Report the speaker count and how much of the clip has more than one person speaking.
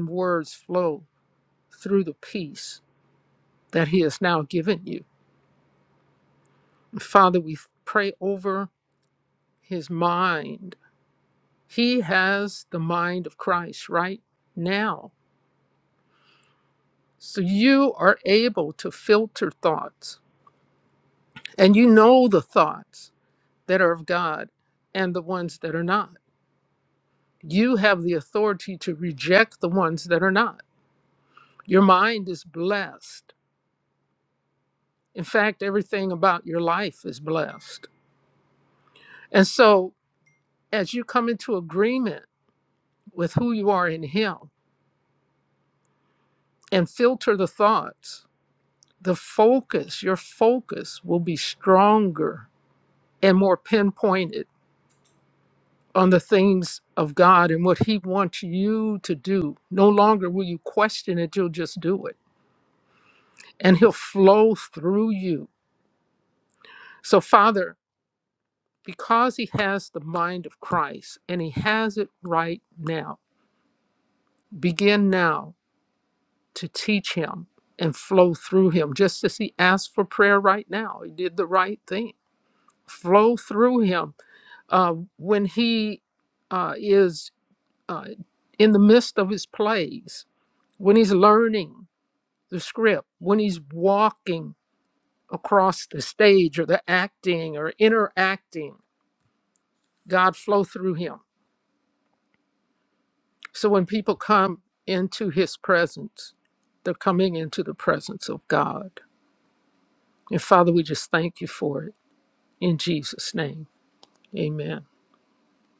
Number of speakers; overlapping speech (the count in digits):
1, no overlap